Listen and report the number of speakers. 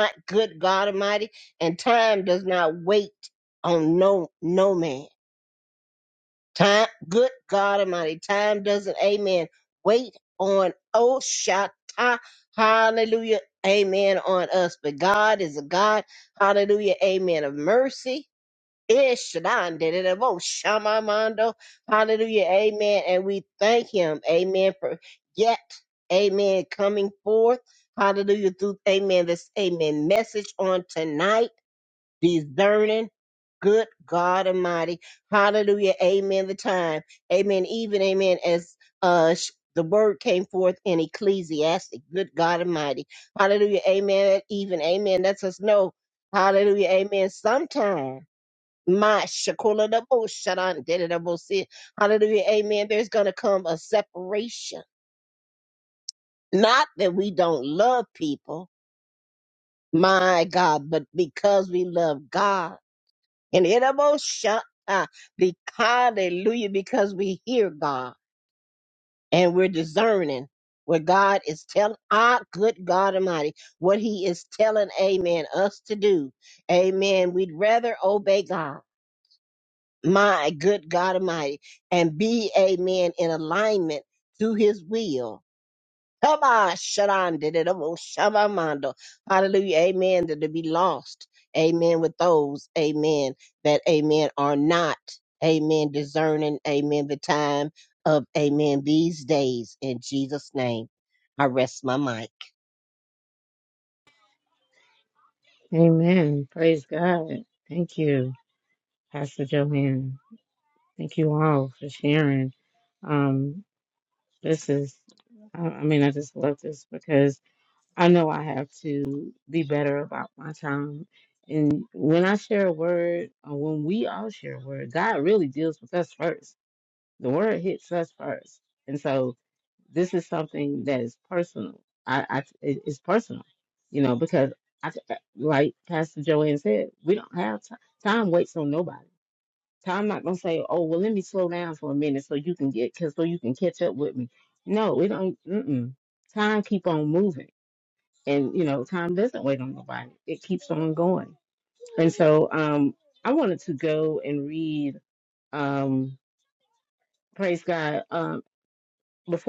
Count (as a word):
two